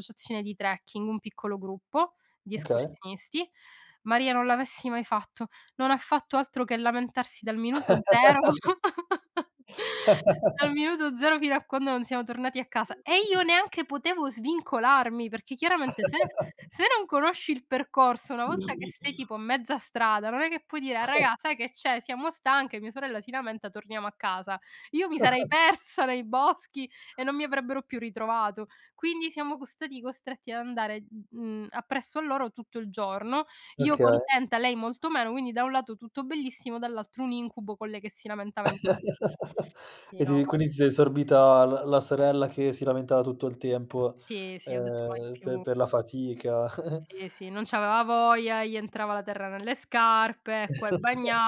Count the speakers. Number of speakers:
two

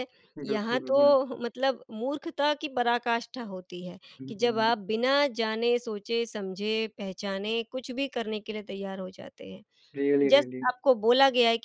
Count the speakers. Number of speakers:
two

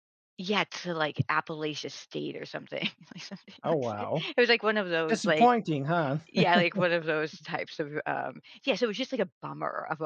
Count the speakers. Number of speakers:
two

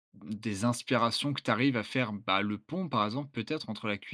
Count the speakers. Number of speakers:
one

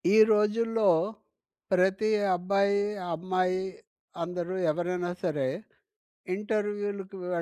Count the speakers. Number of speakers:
one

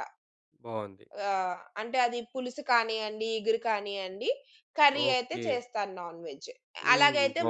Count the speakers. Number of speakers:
two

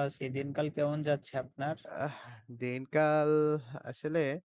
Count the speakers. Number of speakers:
two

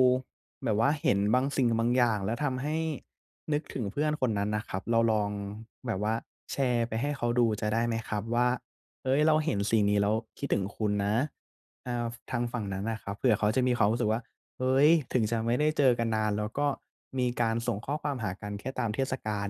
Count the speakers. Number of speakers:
one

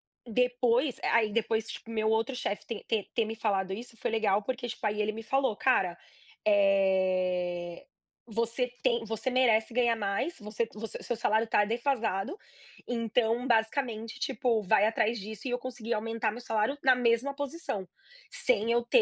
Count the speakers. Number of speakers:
one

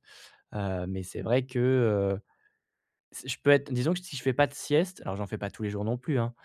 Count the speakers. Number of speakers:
one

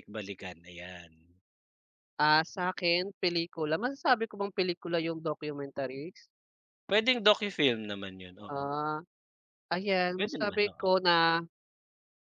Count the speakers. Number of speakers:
two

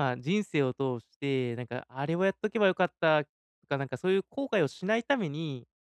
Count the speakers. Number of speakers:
one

